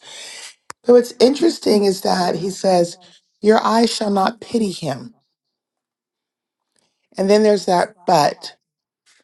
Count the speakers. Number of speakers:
1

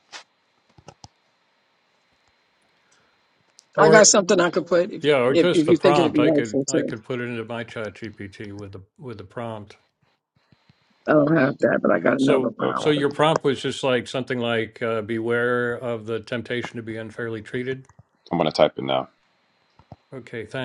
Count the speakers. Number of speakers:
3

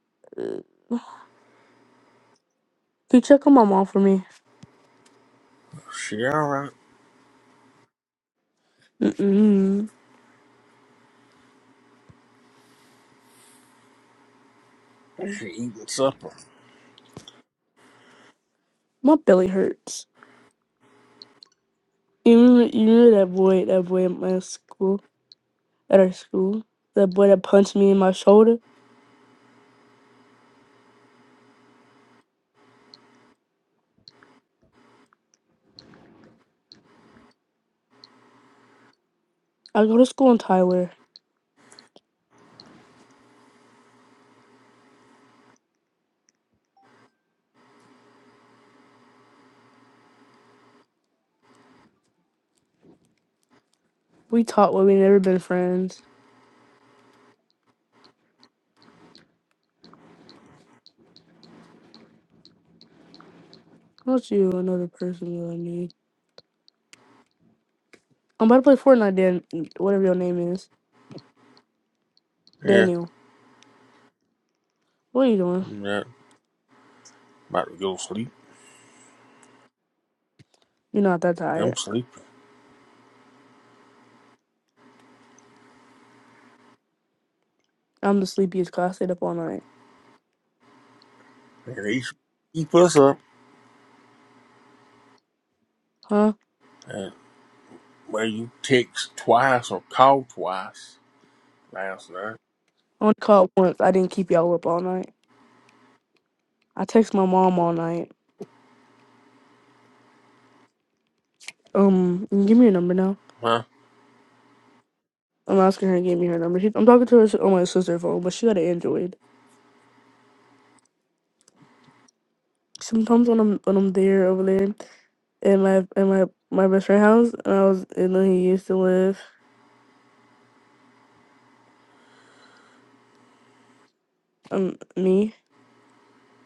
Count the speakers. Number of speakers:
2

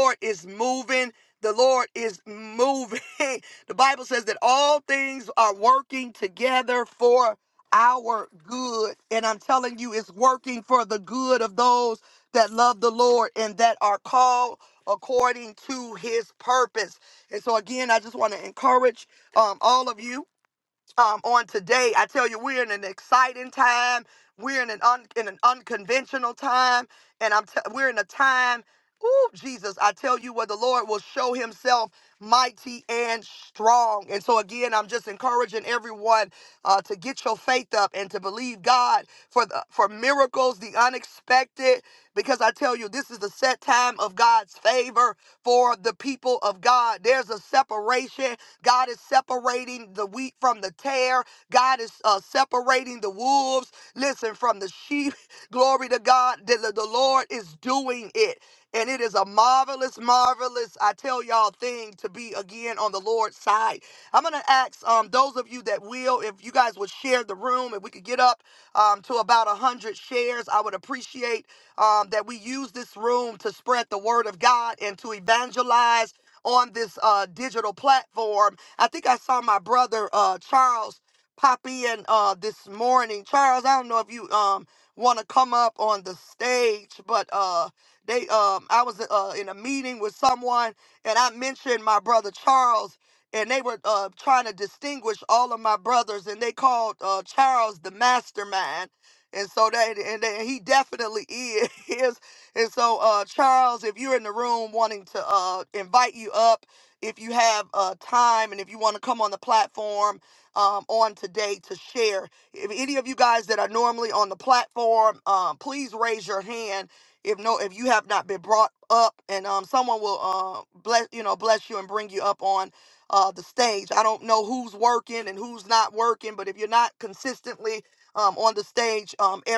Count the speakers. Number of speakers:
1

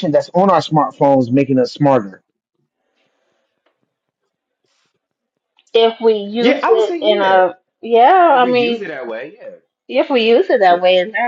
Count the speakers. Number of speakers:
3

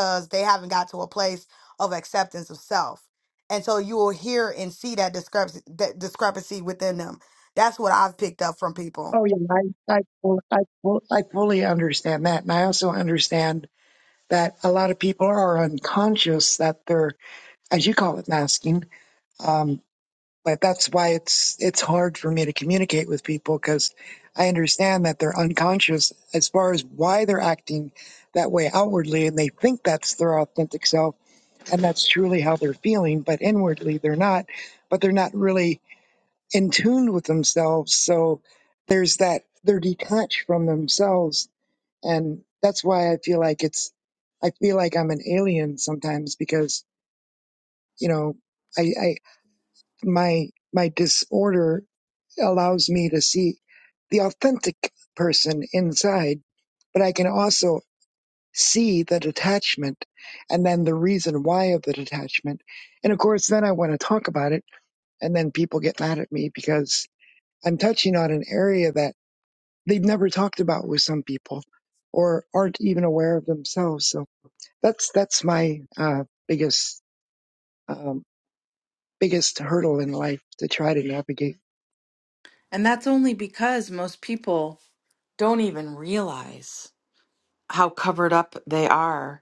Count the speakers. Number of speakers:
3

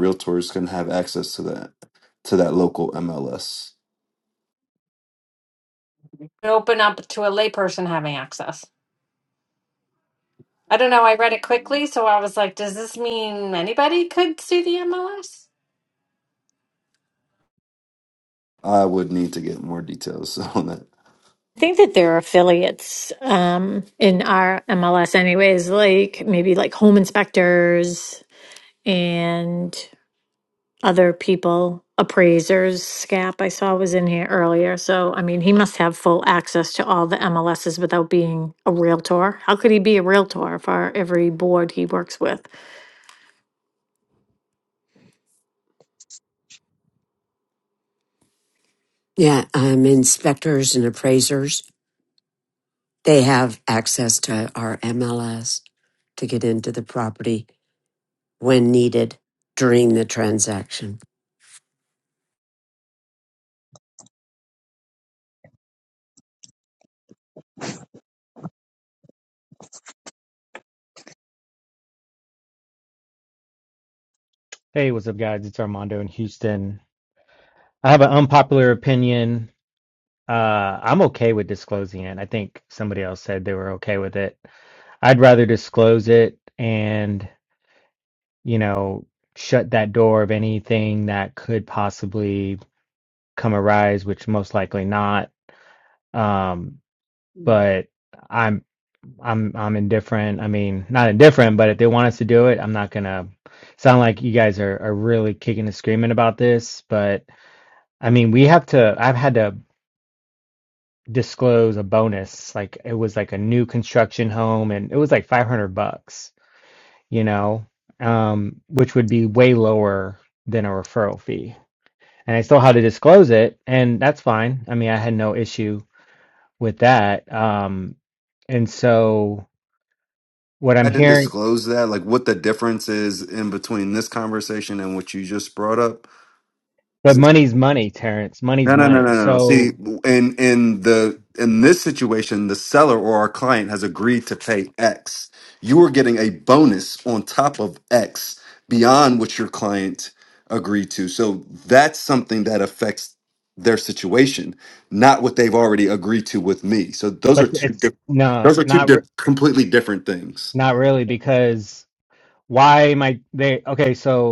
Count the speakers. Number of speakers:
5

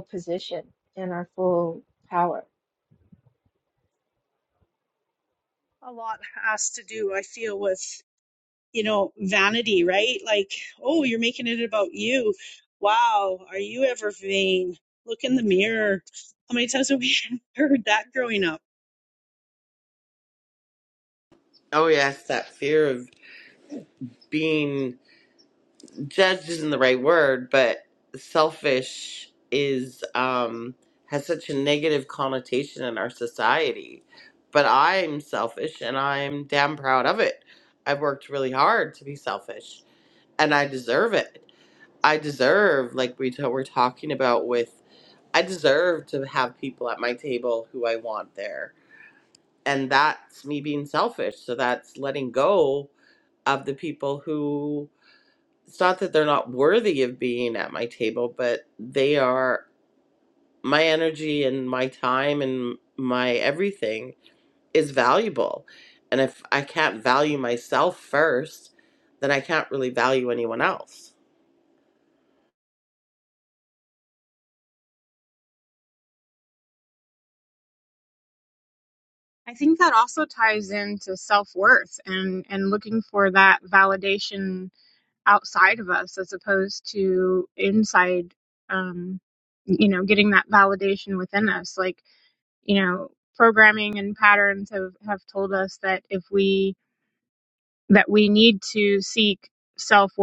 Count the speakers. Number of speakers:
4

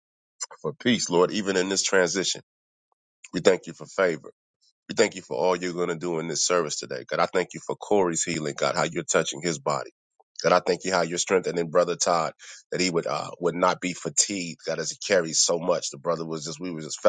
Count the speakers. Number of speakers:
1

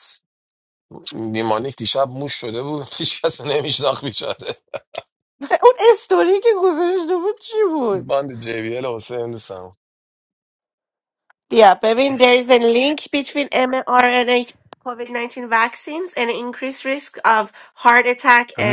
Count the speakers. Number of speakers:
2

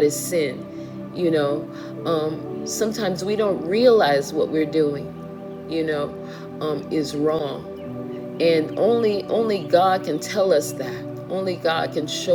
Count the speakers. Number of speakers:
1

